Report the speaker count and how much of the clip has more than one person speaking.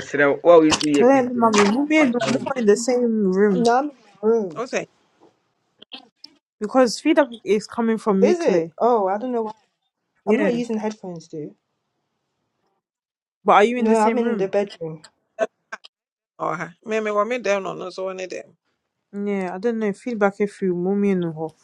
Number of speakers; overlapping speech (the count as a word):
four, about 12%